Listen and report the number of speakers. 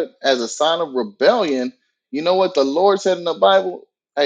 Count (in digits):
1